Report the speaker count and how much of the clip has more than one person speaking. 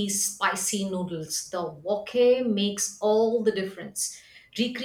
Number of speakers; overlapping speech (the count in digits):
1, no overlap